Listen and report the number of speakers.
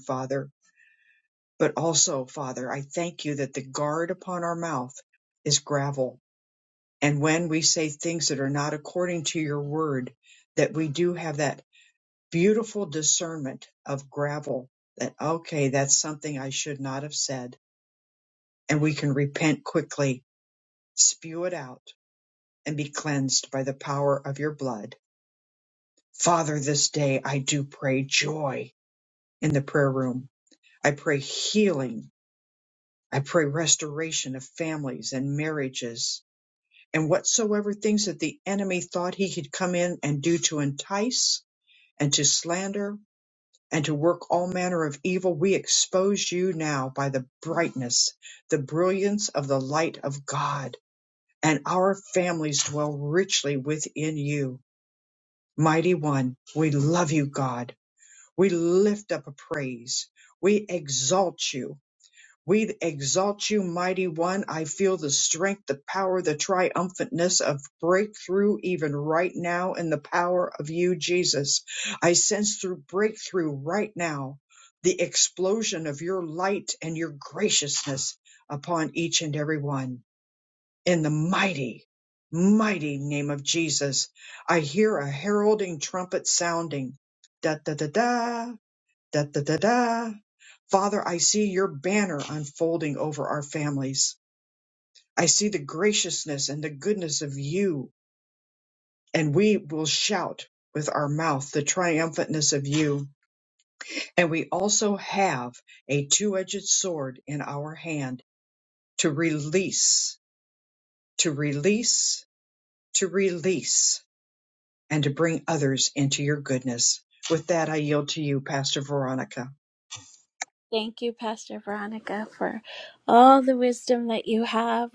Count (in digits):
2